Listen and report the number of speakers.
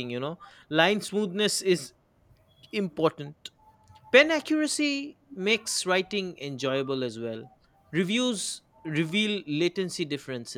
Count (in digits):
1